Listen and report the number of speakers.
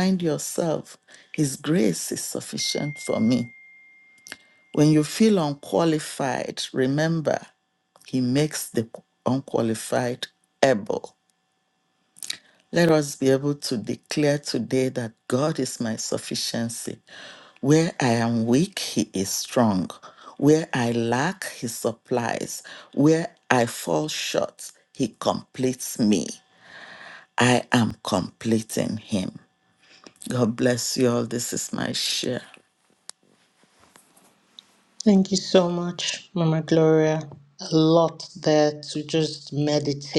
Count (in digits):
2